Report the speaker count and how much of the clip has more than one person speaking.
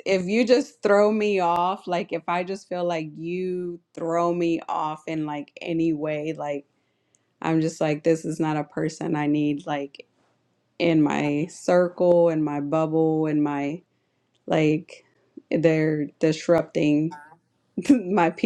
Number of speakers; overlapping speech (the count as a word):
one, no overlap